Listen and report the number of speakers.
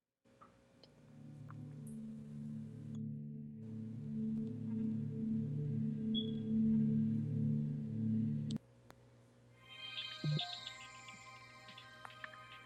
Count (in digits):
0